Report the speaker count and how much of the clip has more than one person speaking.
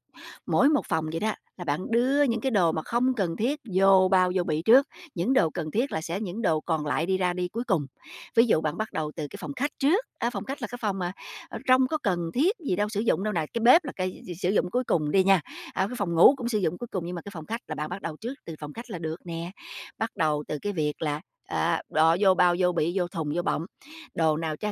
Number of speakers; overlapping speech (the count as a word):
one, no overlap